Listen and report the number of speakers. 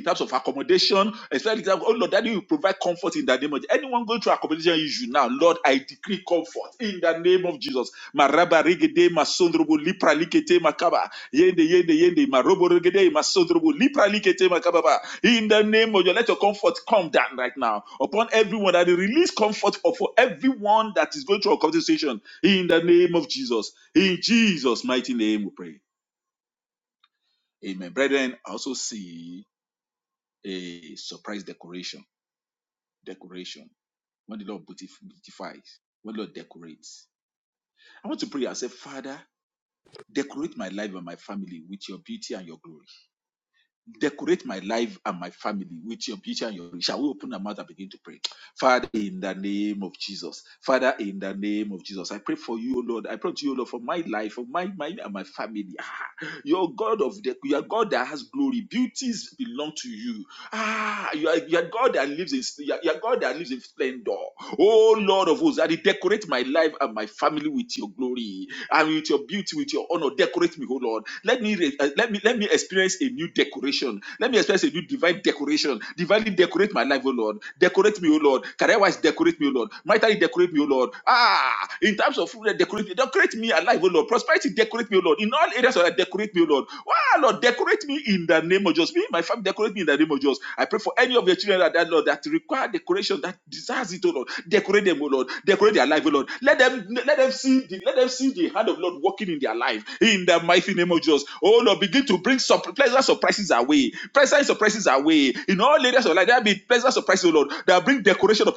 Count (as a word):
one